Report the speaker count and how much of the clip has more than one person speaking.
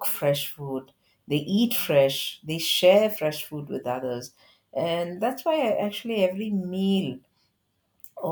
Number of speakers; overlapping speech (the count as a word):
one, no overlap